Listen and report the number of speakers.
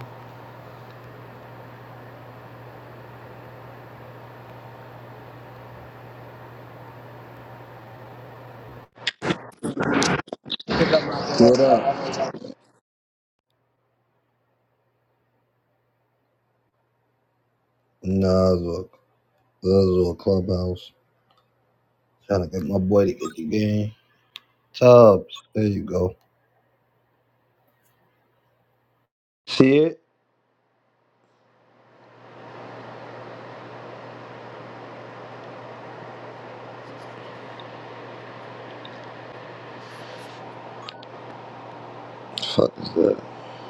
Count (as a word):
one